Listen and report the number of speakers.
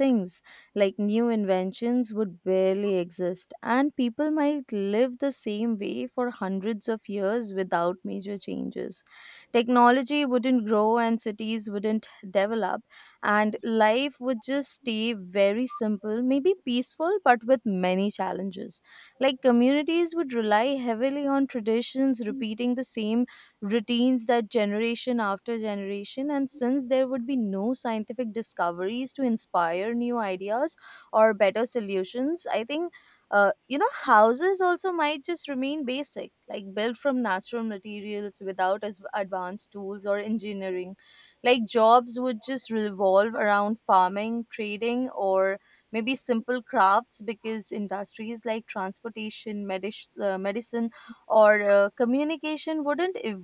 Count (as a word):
one